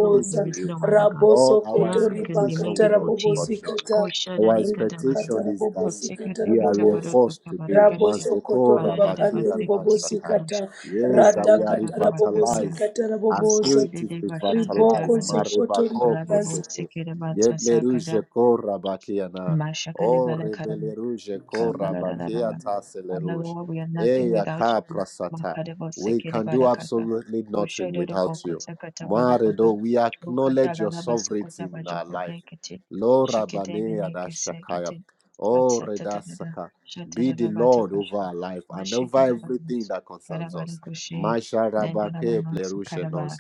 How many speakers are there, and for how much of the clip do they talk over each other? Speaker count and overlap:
3, about 64%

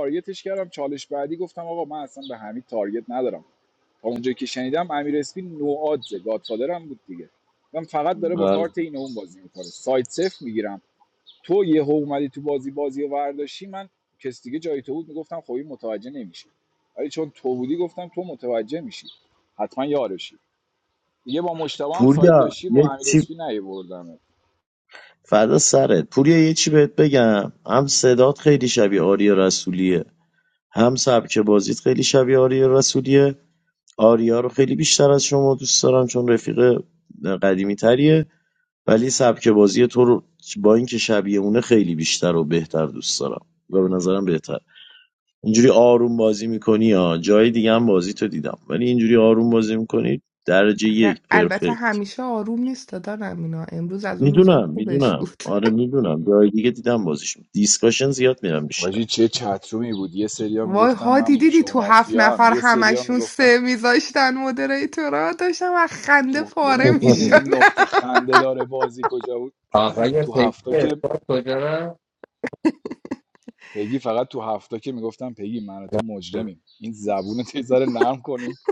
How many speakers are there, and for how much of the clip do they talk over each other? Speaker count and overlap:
4, about 11%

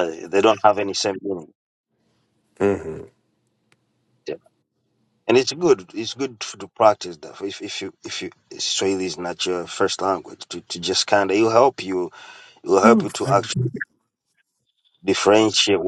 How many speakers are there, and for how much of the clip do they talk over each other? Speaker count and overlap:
2, about 4%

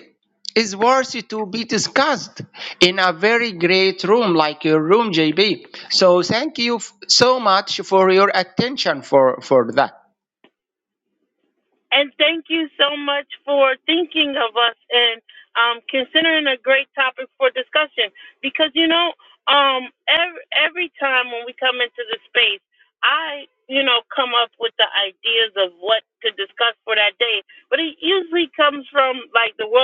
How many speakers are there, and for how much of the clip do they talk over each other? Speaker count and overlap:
2, no overlap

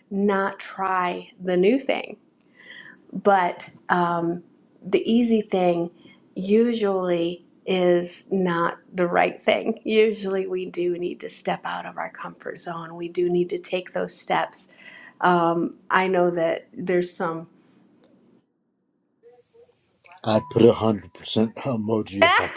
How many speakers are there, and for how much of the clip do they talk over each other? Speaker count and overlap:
2, no overlap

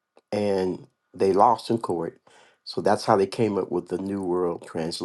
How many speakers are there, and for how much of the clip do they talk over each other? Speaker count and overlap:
1, no overlap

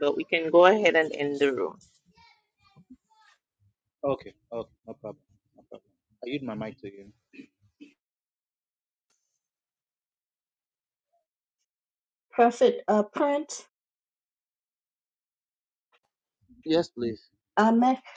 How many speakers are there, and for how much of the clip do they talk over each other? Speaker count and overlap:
3, no overlap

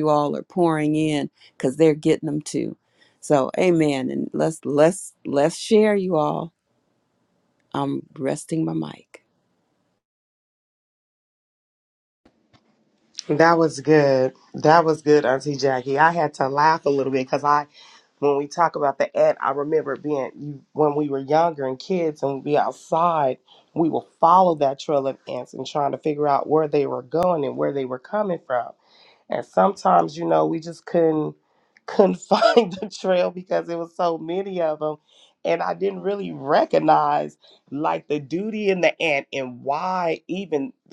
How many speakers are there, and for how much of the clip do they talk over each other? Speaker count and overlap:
2, no overlap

